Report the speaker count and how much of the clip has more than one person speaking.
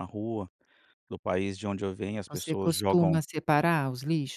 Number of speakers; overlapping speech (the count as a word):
two, about 20%